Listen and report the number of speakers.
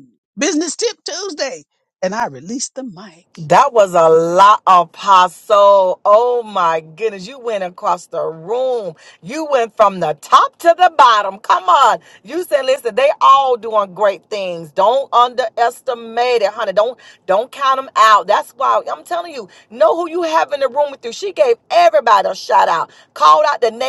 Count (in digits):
2